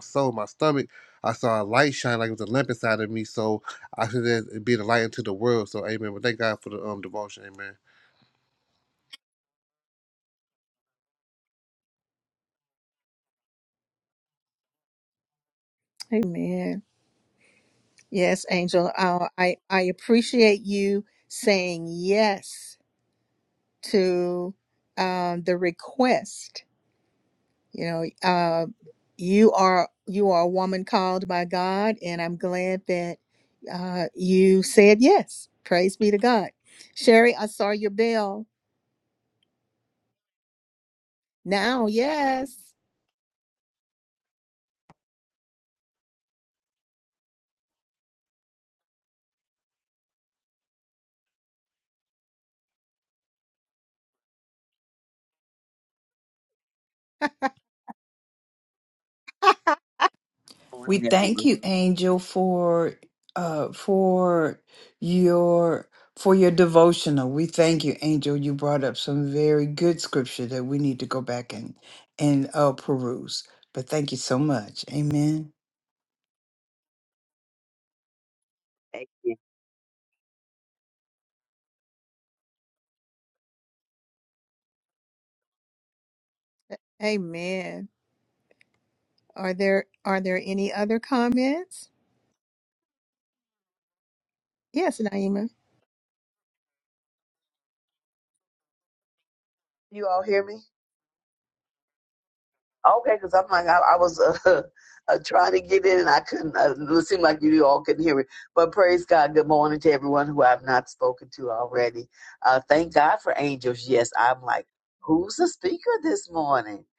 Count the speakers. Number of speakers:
4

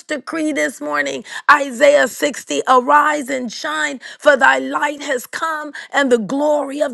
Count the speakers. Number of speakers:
1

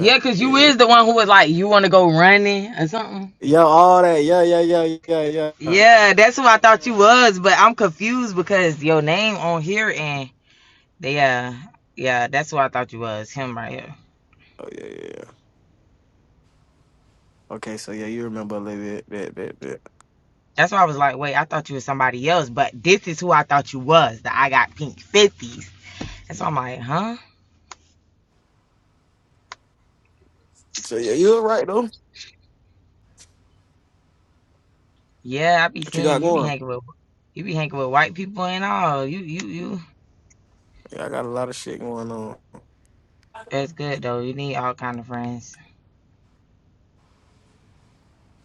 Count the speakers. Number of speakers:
2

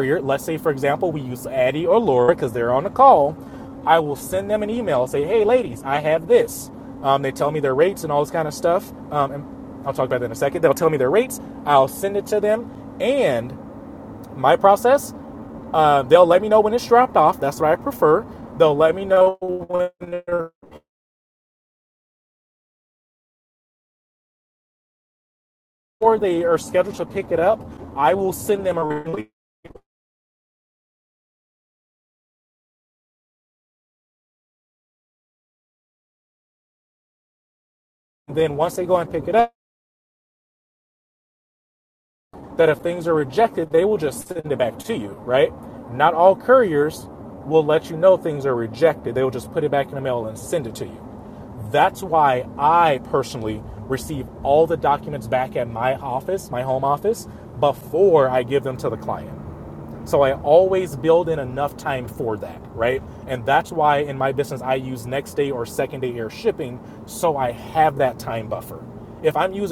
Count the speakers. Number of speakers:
1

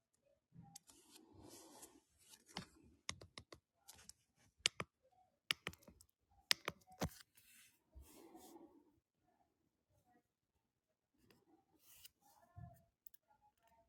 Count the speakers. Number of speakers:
0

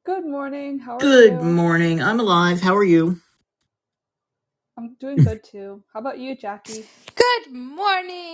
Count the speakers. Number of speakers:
3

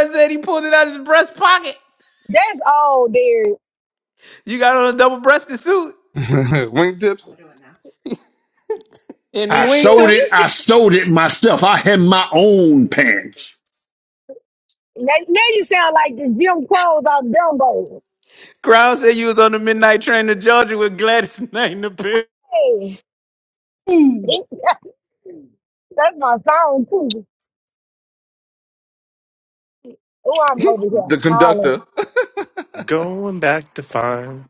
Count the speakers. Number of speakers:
5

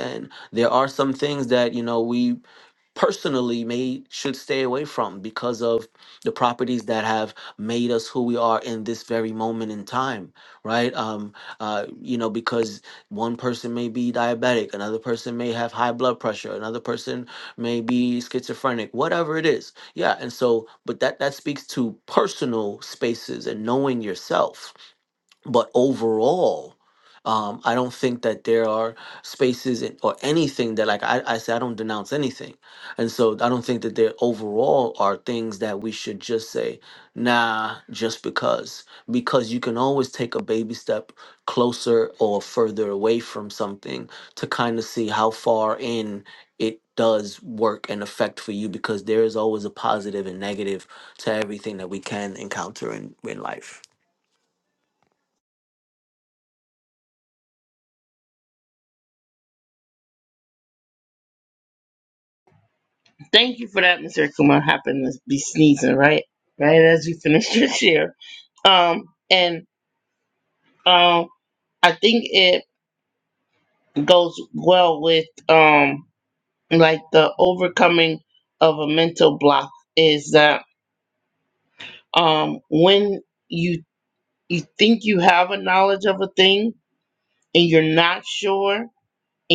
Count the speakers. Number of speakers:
2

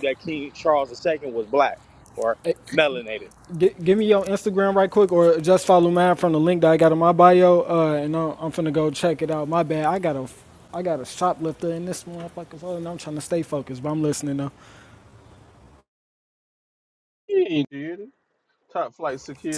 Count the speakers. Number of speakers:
3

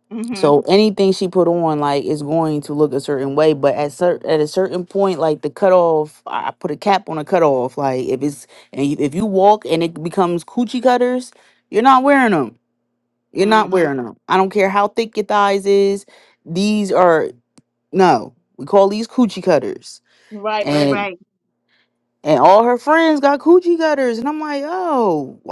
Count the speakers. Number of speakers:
2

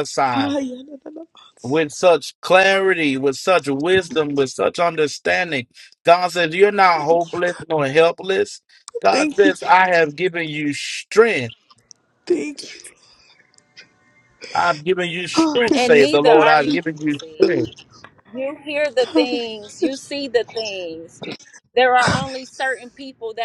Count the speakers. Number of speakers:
3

